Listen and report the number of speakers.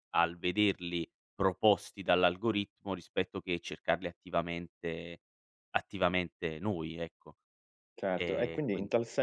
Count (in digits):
2